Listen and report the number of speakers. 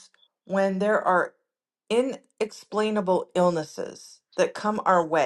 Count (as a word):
one